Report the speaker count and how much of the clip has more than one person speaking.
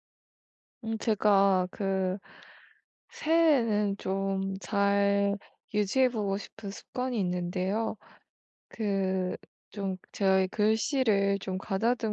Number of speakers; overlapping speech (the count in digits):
1, no overlap